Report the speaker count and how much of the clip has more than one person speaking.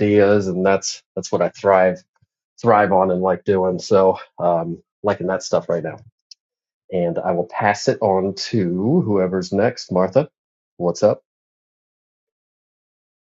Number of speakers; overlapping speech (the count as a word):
one, no overlap